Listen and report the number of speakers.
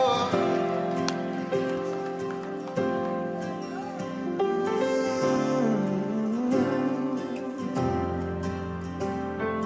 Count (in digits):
0